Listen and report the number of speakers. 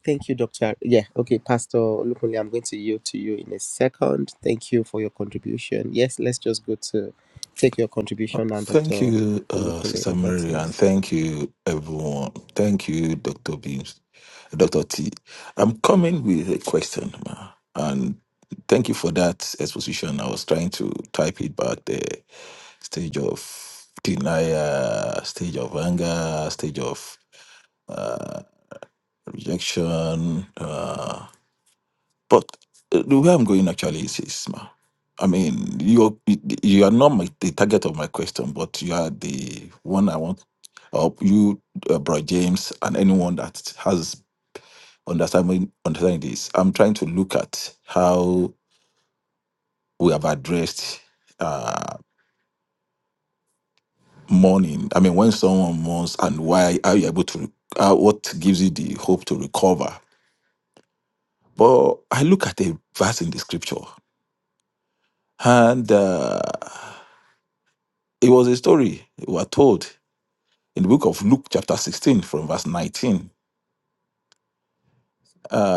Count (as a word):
two